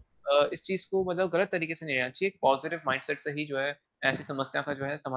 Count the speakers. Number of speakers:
one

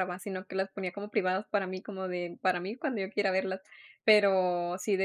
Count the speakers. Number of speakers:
one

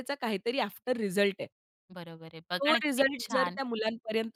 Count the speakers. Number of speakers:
two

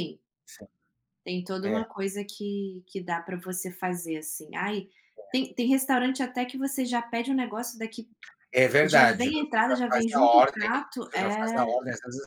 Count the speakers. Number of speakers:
two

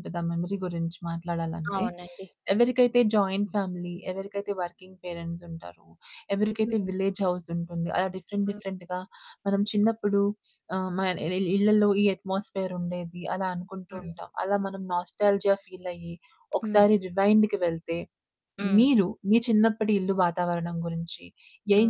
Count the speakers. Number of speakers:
two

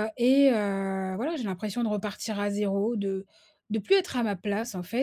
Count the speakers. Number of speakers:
one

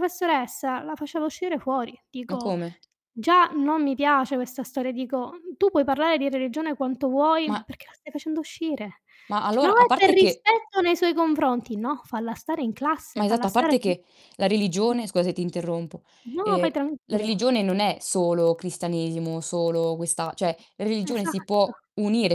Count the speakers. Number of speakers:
two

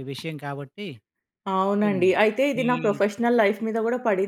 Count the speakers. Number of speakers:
two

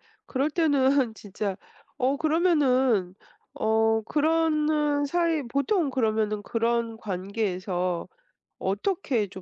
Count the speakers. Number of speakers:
one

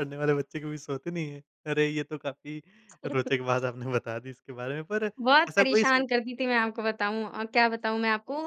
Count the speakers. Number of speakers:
two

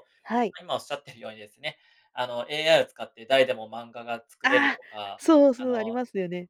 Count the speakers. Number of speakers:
two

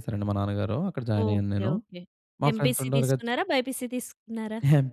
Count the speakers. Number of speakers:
two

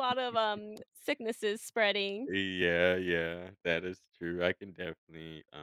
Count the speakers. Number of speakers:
two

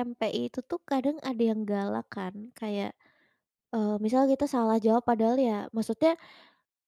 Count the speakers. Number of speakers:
one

